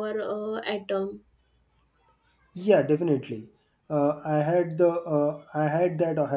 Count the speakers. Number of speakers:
2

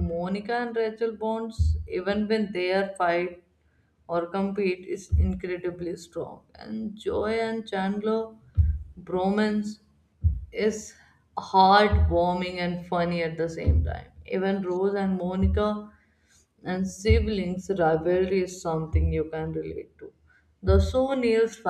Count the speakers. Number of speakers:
1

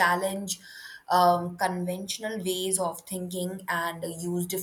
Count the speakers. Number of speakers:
1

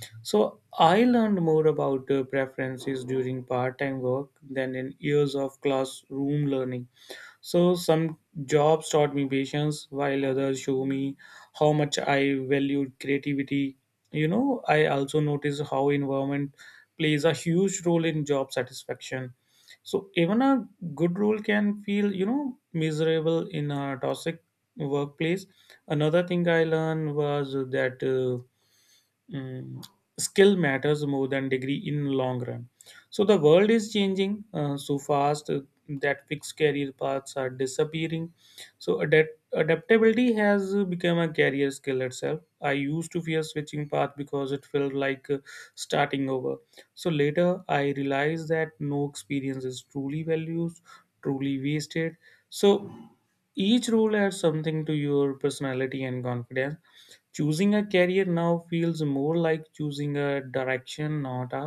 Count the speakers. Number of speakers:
1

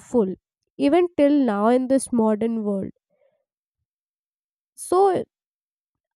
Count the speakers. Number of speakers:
1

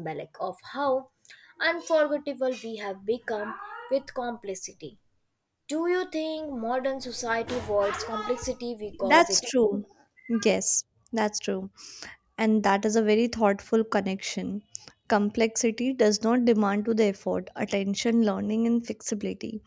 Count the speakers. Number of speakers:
2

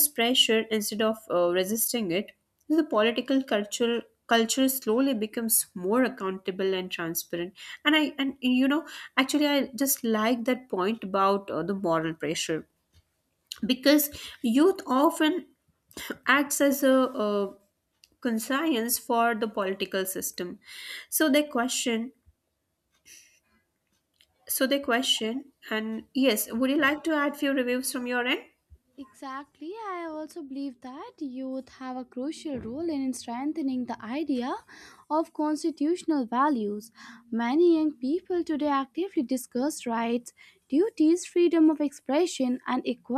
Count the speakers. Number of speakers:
2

